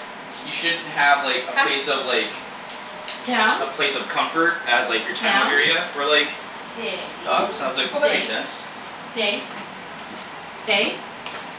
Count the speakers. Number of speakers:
2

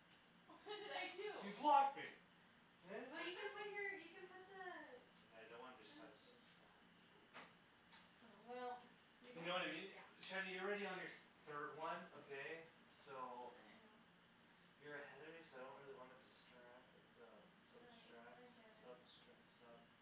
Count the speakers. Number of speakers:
3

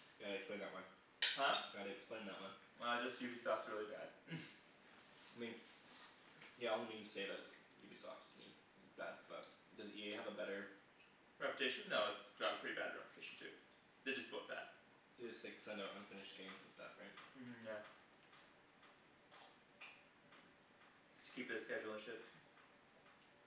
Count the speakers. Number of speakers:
2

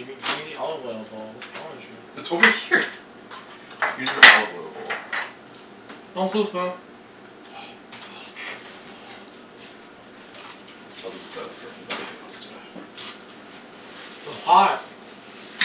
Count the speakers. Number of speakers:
2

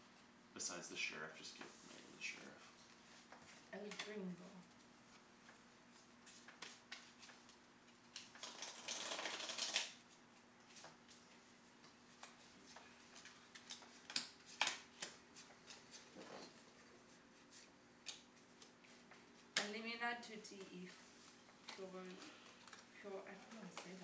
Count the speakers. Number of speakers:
2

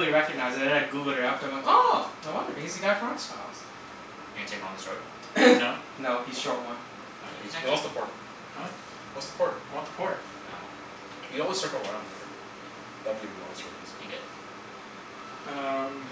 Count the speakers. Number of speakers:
4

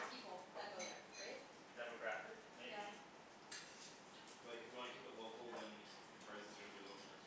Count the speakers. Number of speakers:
3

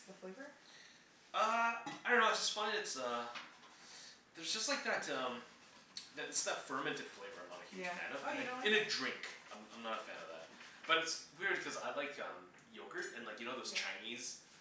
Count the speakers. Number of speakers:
2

